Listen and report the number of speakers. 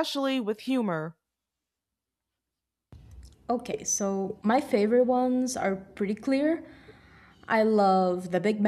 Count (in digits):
2